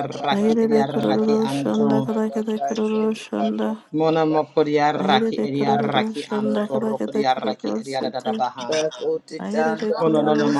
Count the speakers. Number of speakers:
3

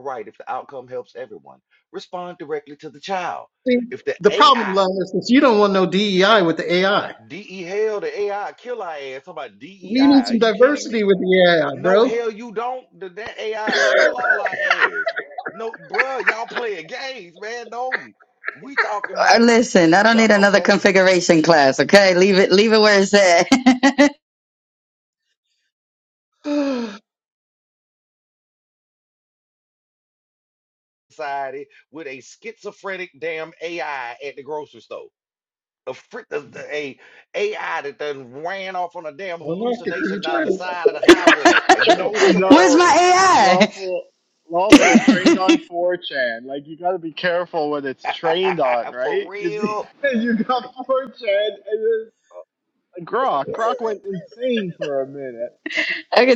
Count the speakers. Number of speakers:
4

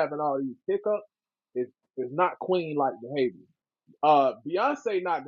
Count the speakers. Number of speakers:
1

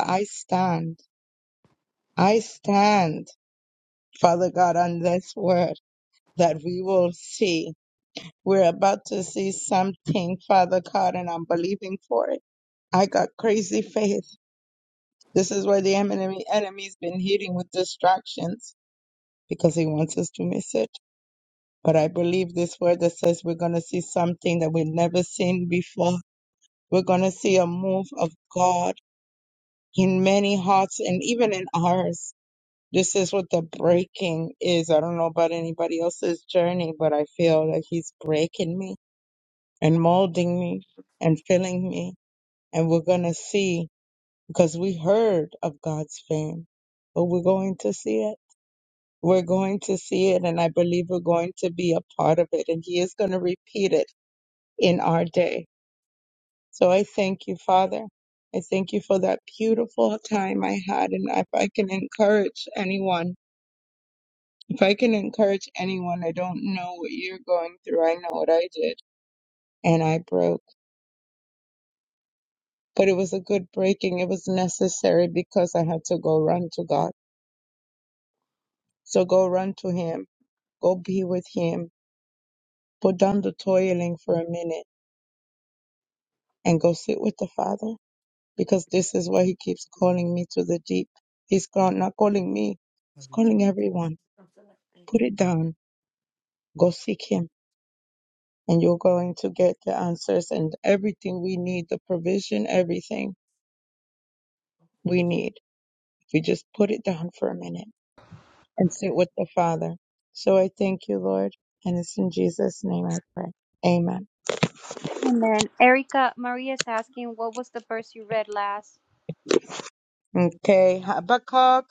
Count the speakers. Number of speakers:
2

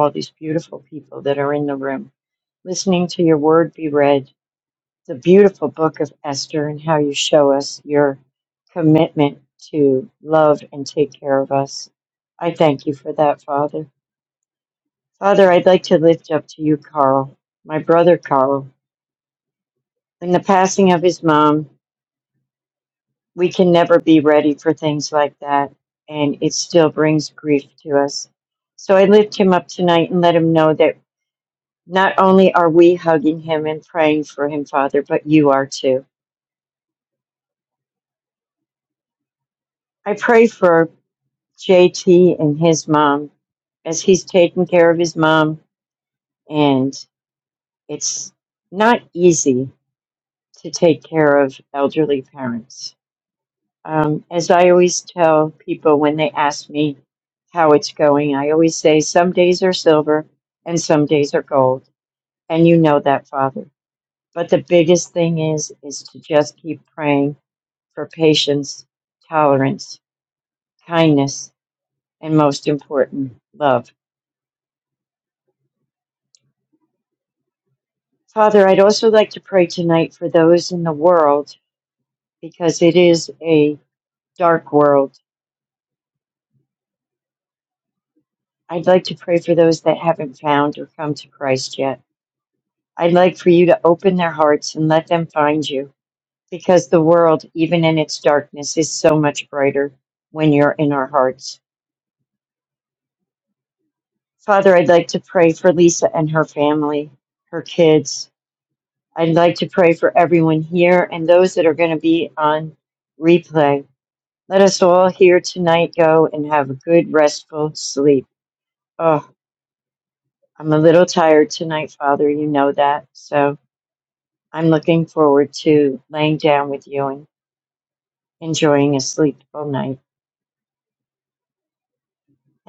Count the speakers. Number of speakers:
1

